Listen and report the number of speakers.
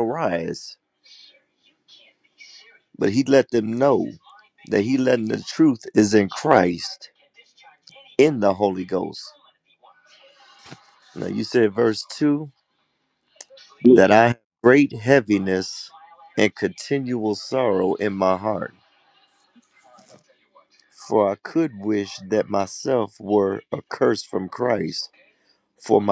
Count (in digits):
1